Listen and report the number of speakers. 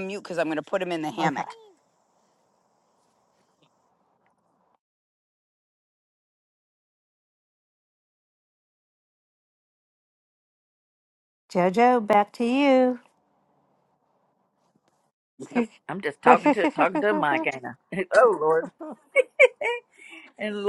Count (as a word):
three